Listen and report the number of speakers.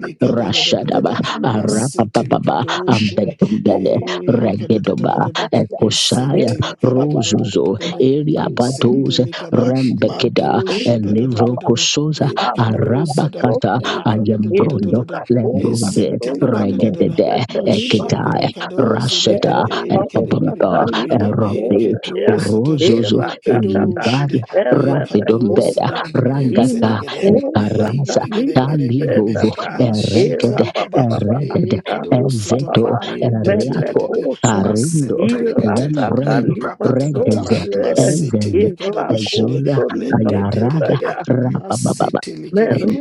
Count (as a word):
three